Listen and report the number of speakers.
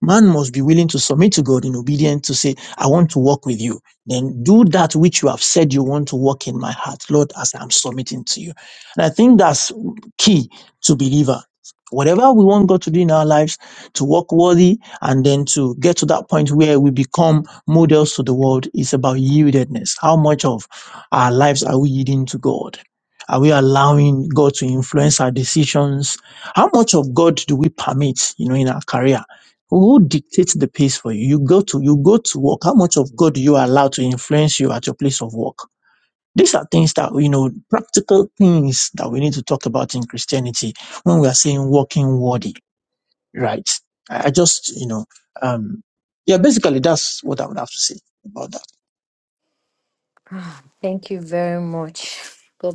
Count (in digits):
2